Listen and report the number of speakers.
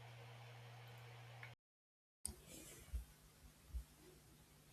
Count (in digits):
0